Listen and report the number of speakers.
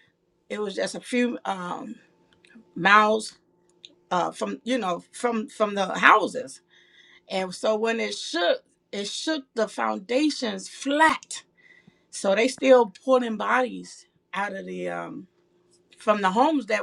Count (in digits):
1